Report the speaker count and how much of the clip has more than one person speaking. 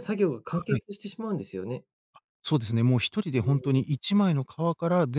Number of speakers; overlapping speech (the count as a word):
two, about 13%